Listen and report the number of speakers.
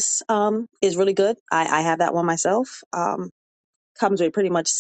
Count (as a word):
one